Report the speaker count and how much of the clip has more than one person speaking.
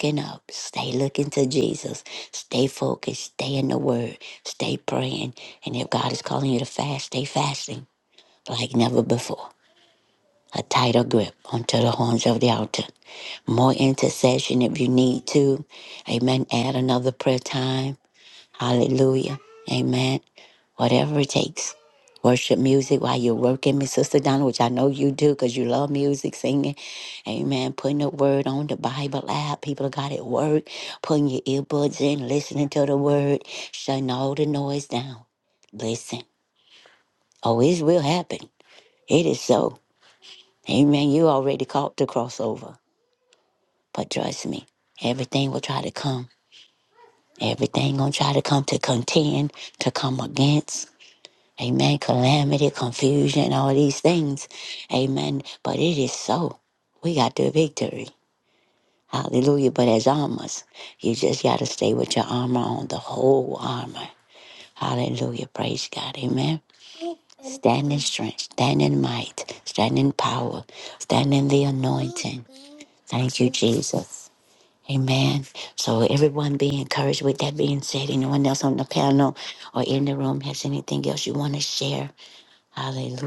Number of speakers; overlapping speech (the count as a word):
one, no overlap